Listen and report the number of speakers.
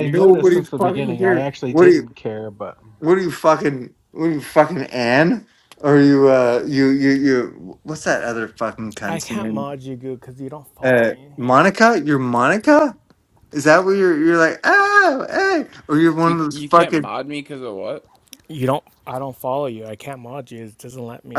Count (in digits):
4